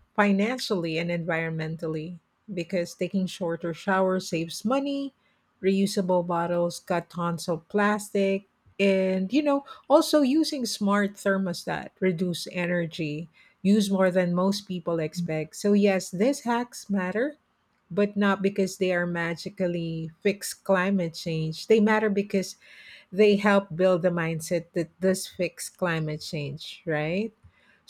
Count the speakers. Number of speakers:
1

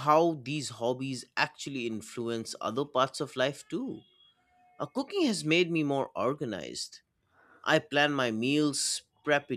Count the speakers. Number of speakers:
1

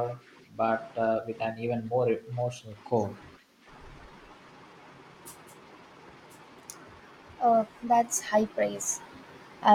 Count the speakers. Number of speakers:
2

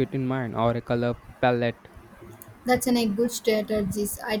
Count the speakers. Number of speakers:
2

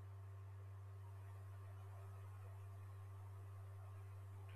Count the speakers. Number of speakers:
0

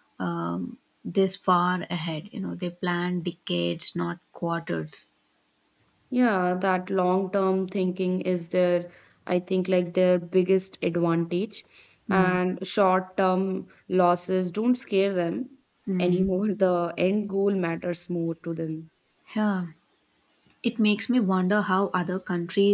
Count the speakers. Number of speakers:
2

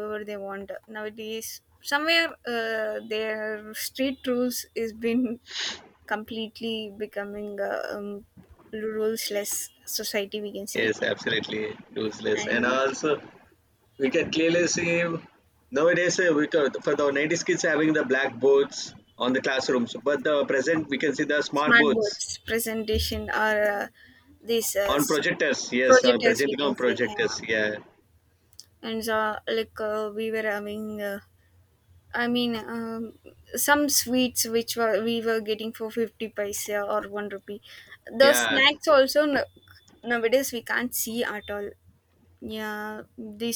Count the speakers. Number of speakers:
2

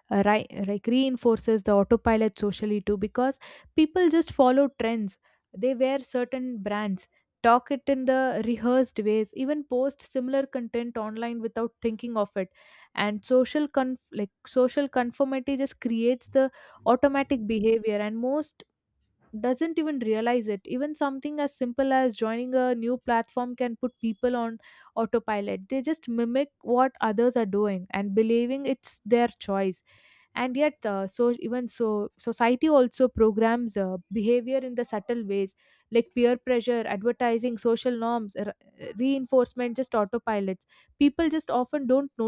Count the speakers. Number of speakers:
1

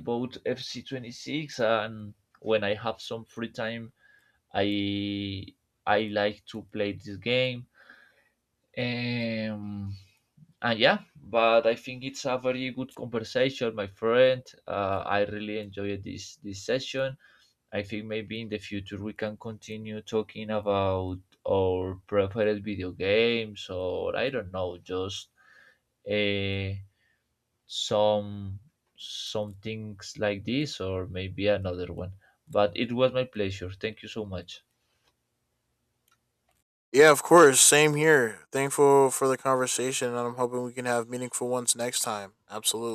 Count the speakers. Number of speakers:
2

